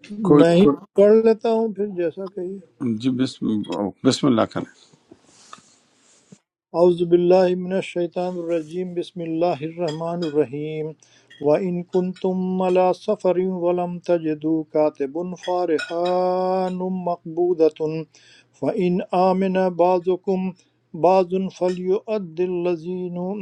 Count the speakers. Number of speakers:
two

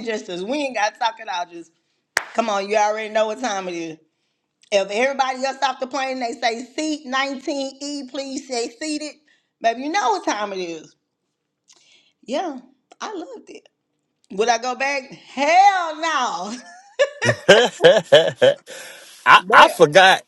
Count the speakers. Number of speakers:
two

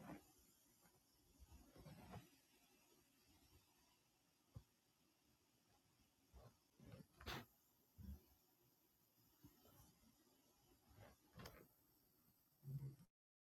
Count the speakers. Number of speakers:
zero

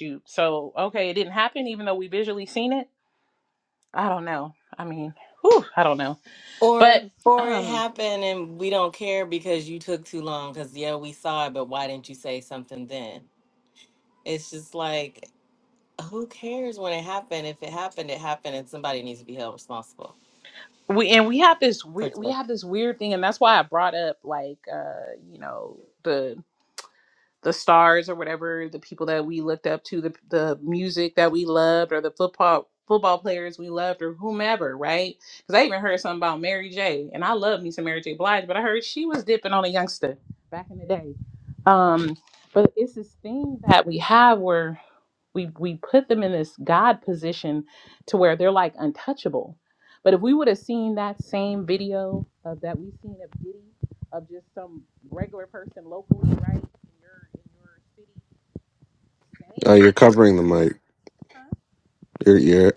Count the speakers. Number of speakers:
three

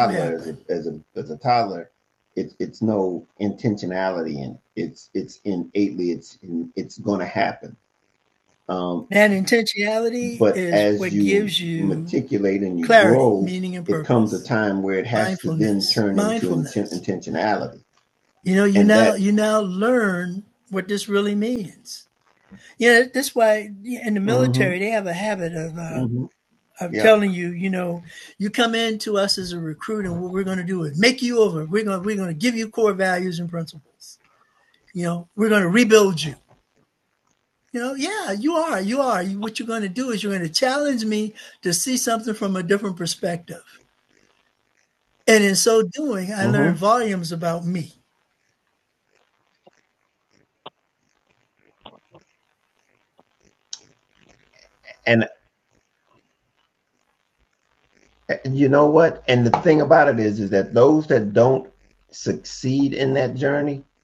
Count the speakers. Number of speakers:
two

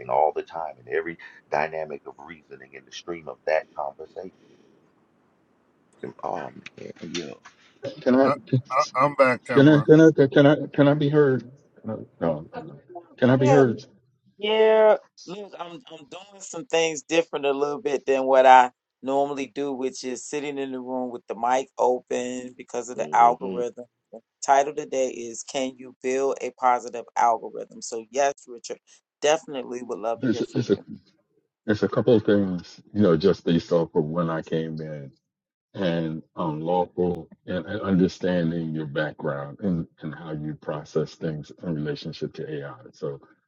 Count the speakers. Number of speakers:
four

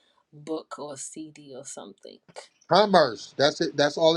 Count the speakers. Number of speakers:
two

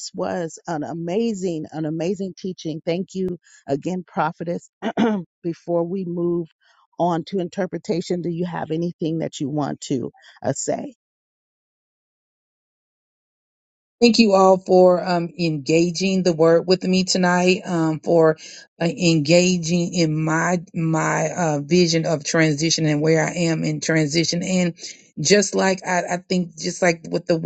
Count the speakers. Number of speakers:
two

